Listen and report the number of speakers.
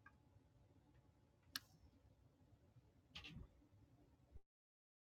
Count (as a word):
zero